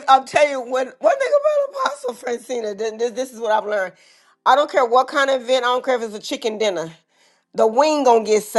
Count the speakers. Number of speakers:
1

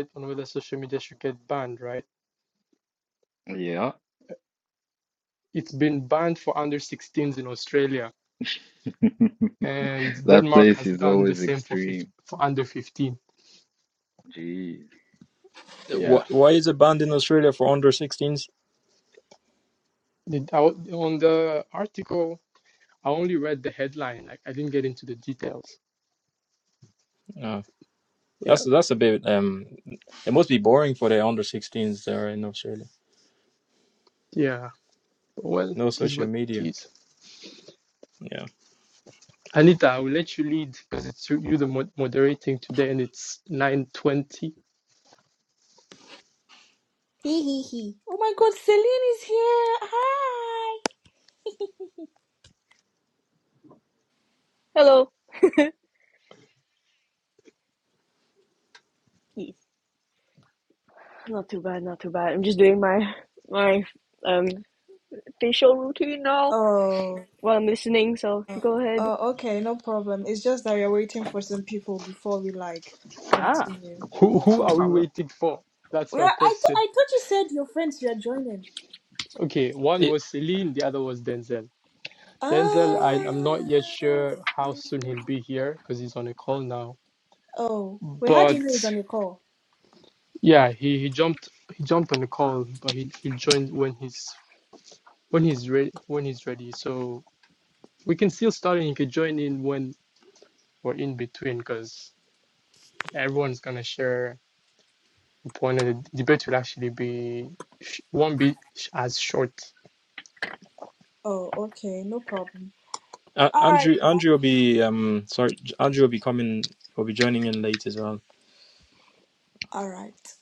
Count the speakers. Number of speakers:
5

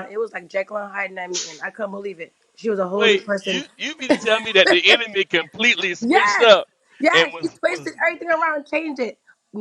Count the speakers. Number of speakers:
2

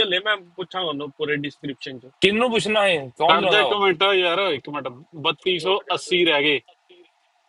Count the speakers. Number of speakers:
3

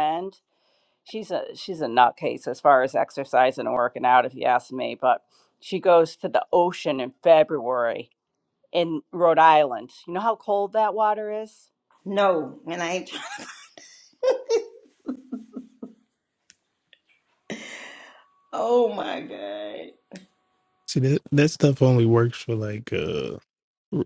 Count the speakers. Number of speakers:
3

